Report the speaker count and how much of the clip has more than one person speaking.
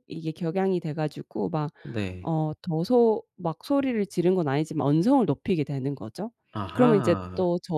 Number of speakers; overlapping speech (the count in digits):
2, about 10%